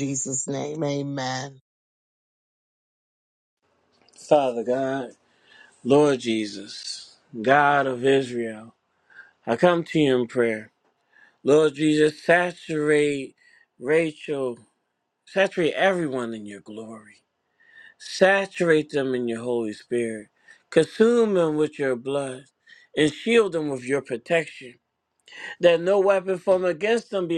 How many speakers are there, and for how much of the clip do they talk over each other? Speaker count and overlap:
two, no overlap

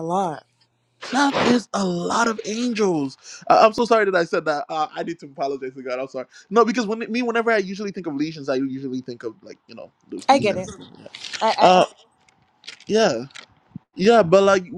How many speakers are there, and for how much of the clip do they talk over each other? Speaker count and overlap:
two, about 5%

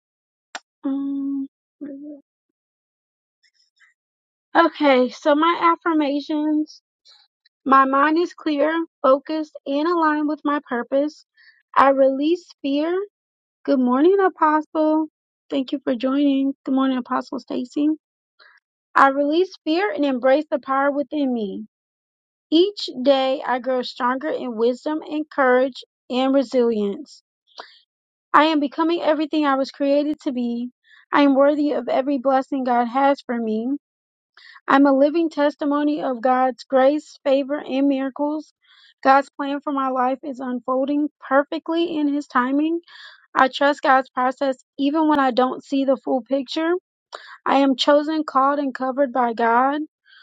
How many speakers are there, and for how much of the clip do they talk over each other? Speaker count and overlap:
one, no overlap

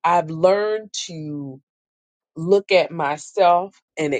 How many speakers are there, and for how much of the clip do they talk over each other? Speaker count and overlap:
one, no overlap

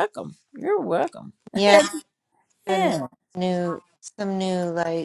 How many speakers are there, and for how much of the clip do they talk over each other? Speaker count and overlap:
two, about 5%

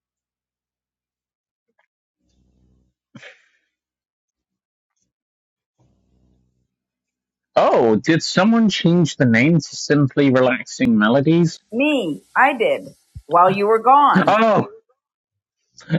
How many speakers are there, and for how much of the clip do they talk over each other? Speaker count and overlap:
two, about 1%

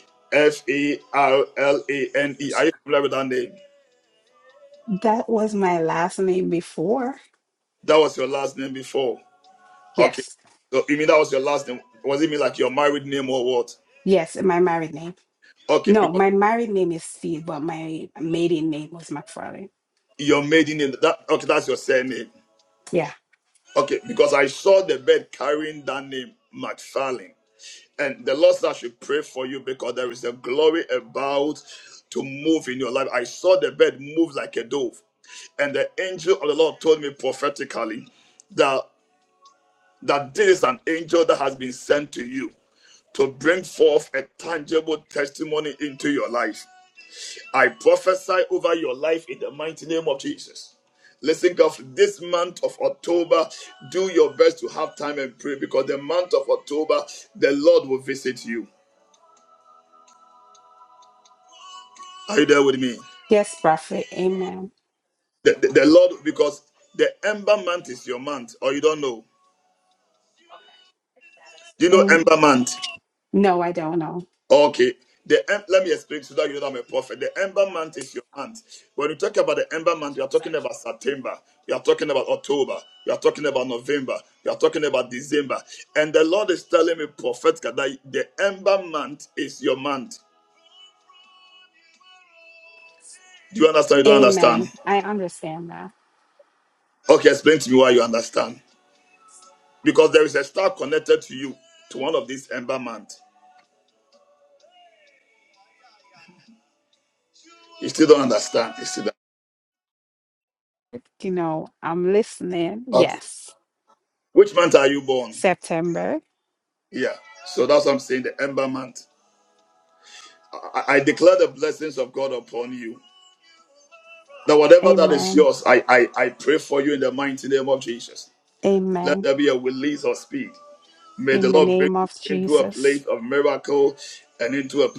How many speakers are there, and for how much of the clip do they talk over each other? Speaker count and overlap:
two, about 3%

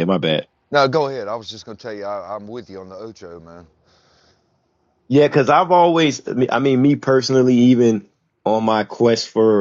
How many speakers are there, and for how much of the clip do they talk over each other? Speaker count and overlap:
two, no overlap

